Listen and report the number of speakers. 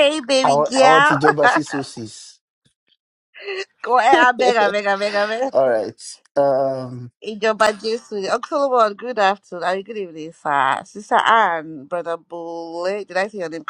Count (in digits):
2